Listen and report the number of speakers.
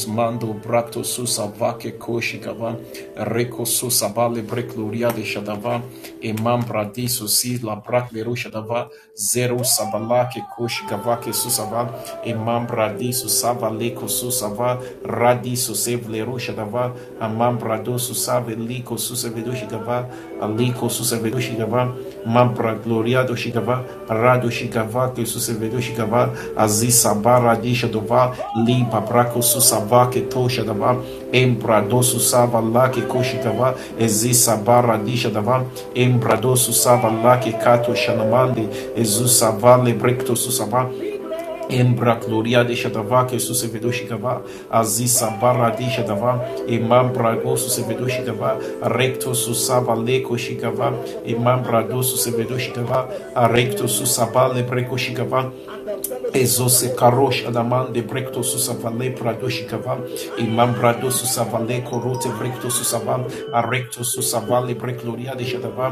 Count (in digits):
1